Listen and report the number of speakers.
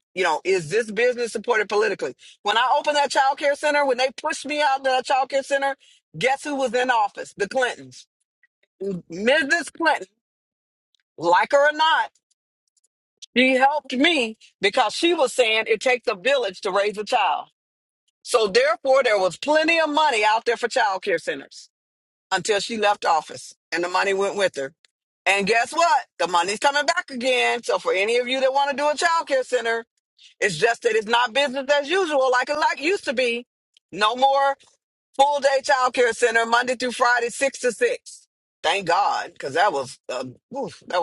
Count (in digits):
1